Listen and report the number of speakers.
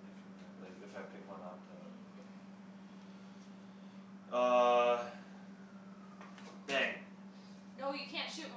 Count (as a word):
two